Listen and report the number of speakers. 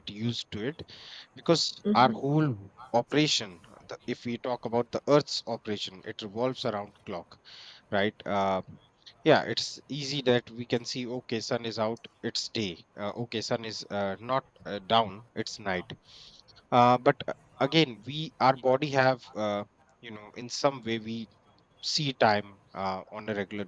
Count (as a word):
one